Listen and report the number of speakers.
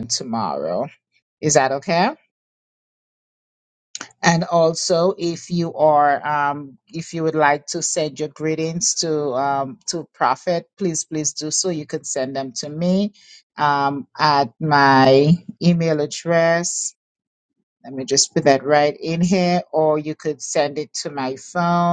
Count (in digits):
1